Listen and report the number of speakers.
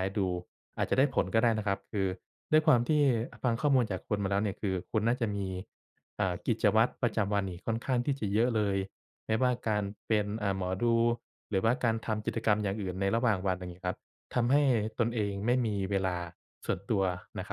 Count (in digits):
1